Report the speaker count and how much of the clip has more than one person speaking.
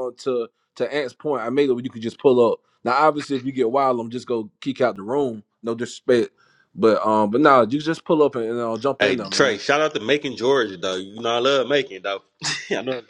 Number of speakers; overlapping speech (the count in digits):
2, about 4%